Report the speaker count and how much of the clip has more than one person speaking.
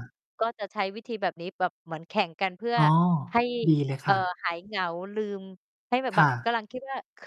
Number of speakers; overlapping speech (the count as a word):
two, about 9%